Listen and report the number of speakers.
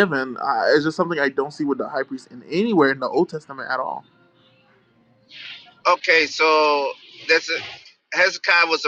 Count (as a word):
two